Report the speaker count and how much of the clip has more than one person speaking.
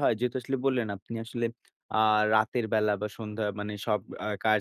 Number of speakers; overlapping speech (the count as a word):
one, no overlap